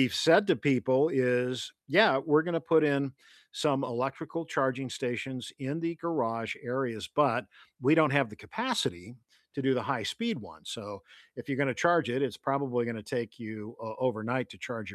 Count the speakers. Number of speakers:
one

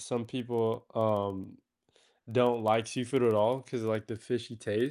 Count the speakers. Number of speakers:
one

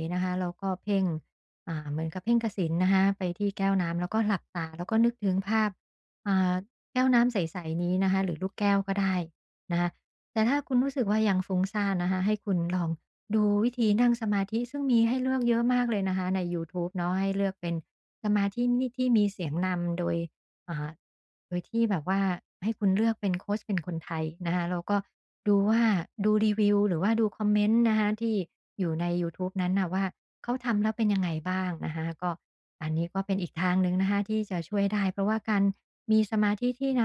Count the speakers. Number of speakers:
one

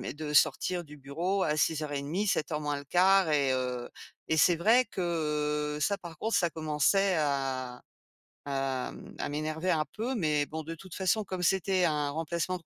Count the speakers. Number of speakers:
one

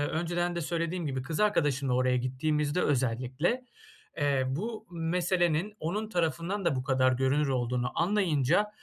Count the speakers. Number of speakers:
one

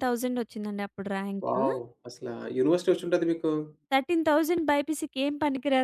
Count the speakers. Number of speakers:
two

